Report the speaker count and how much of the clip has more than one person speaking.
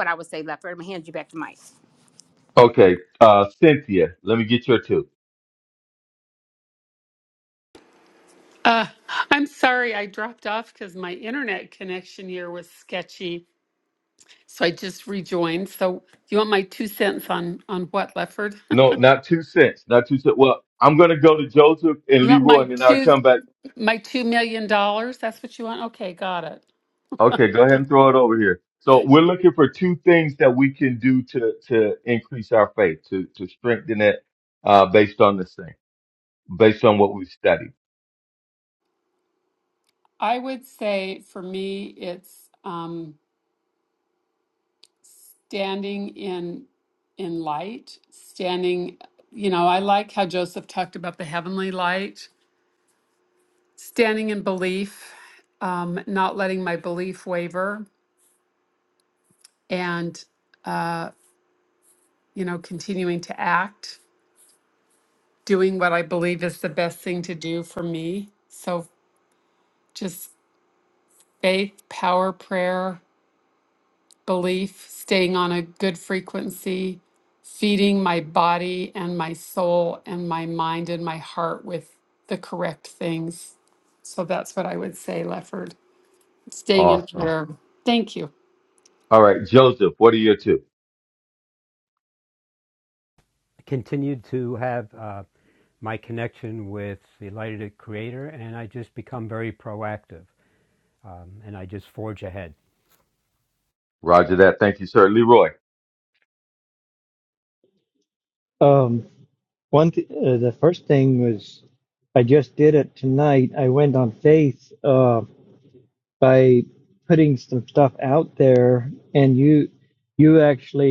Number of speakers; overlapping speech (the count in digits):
5, about 1%